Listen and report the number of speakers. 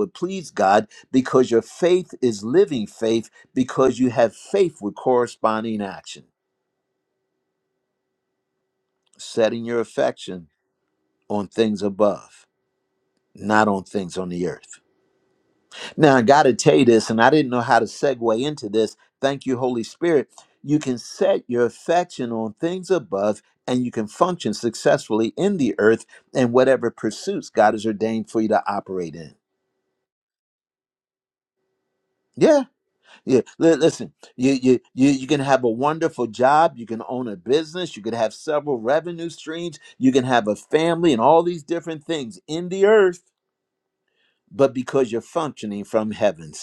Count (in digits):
1